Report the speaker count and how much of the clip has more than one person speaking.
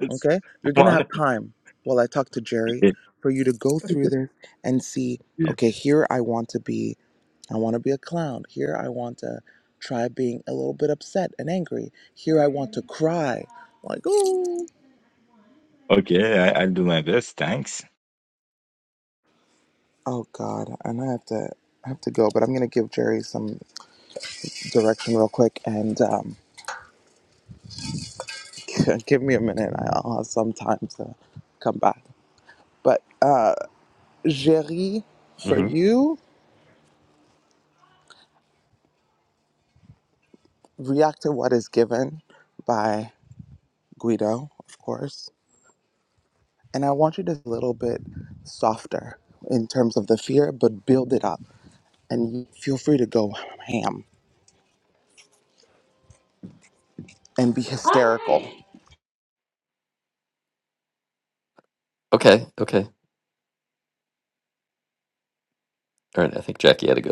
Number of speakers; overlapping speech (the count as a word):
three, about 1%